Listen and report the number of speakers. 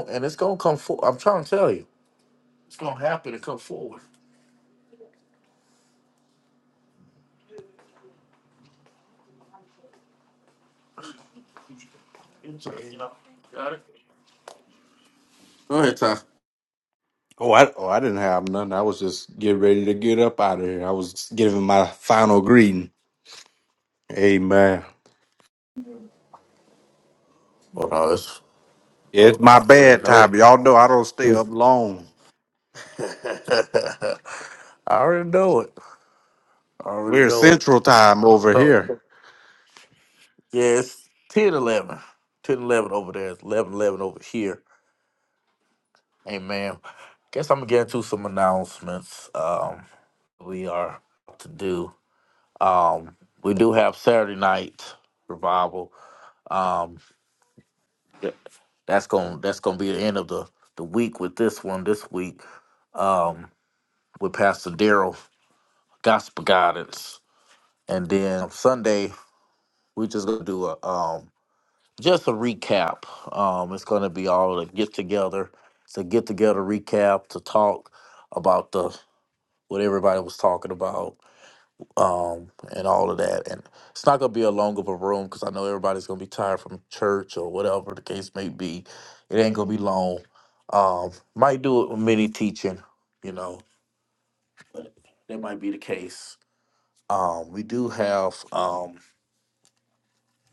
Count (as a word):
two